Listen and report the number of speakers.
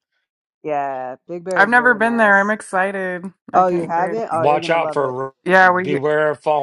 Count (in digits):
3